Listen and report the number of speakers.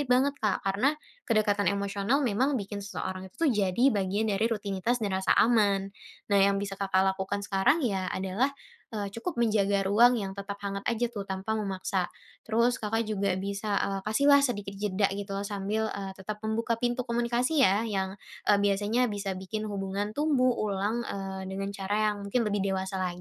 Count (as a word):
one